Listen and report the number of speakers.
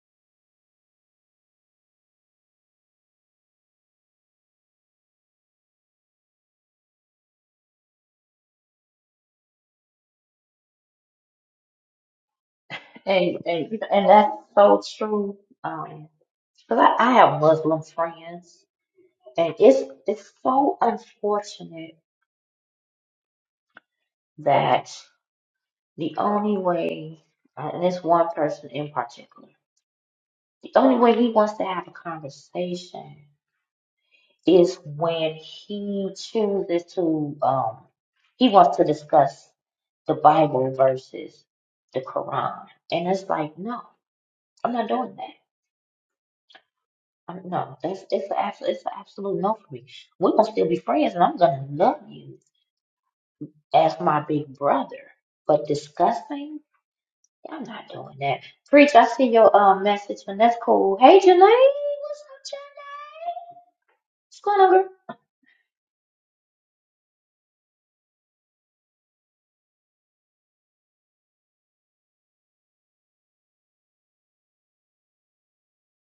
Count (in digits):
1